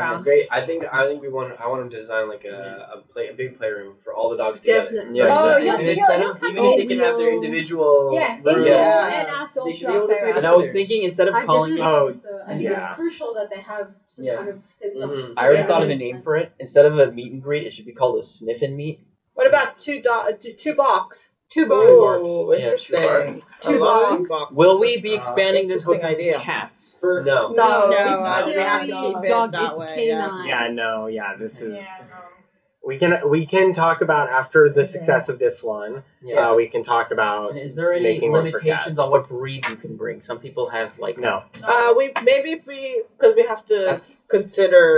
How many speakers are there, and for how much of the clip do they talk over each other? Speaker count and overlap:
6, about 44%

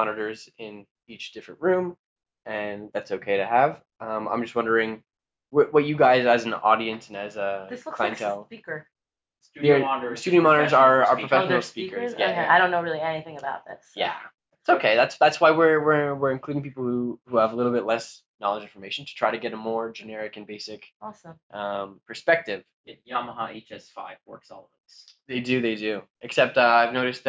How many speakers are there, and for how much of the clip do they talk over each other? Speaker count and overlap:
3, about 15%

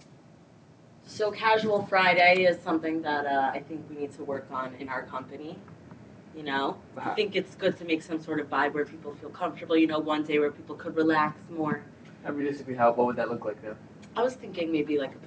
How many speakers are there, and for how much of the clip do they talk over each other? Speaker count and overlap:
2, no overlap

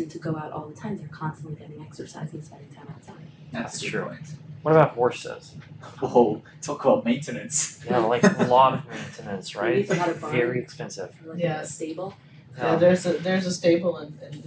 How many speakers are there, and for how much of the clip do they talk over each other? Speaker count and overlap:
4, about 22%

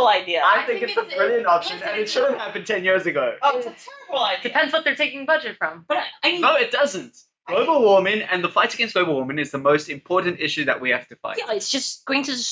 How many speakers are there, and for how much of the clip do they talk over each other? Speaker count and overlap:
4, about 20%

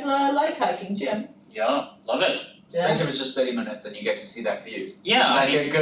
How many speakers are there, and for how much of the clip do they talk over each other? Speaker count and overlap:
3, about 11%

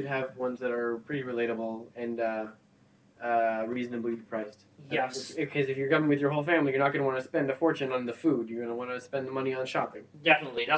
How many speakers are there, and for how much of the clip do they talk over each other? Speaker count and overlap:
2, about 4%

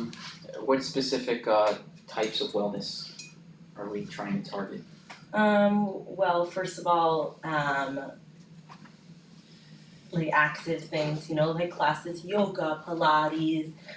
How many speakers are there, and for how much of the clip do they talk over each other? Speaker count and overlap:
2, no overlap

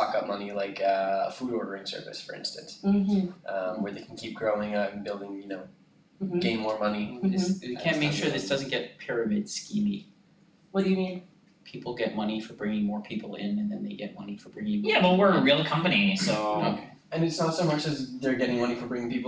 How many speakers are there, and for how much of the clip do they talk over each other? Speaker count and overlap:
4, about 13%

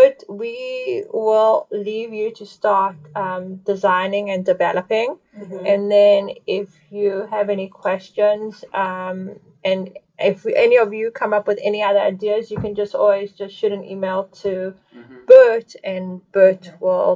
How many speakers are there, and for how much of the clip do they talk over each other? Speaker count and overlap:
1, no overlap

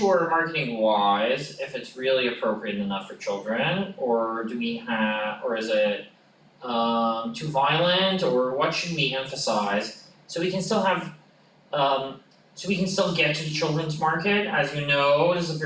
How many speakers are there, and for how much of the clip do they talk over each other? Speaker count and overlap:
1, no overlap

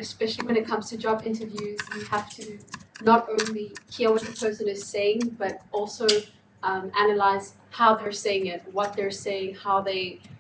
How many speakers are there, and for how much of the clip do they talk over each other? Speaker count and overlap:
1, no overlap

